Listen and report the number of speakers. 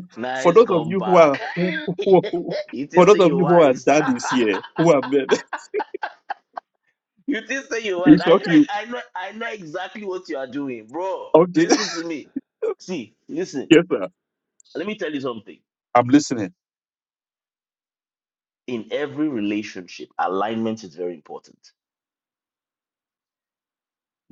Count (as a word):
two